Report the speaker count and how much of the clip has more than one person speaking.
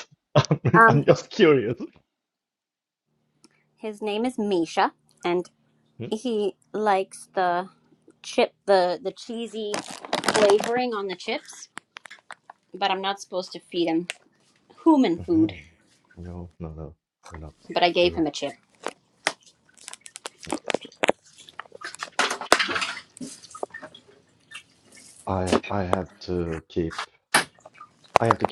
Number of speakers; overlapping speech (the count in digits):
2, about 3%